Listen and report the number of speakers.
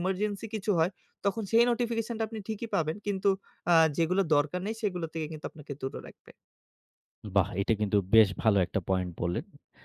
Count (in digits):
2